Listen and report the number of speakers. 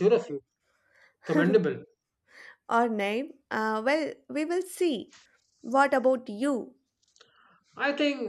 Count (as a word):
two